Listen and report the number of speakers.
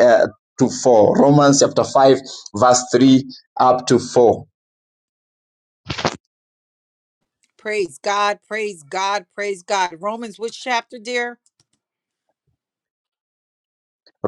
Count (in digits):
2